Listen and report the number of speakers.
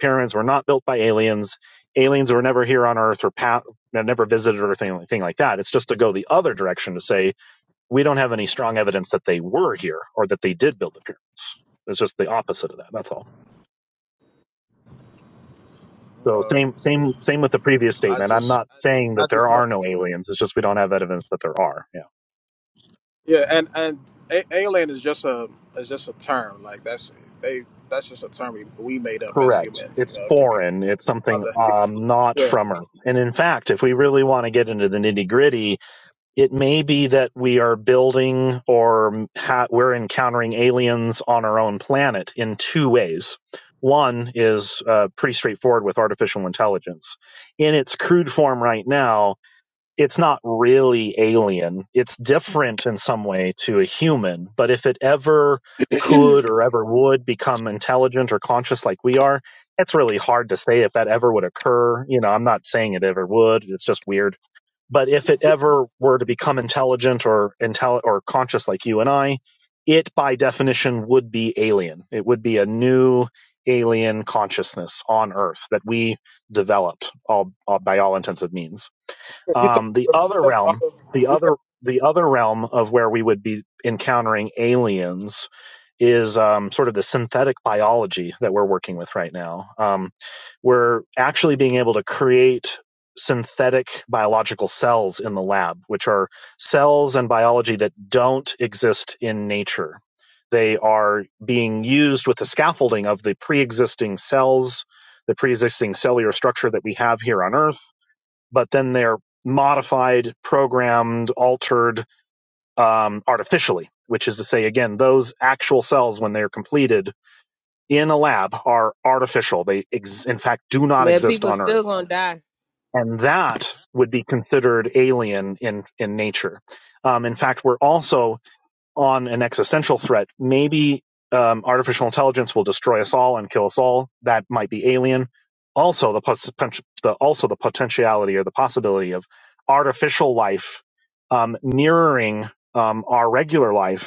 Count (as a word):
three